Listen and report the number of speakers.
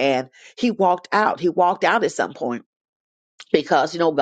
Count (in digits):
1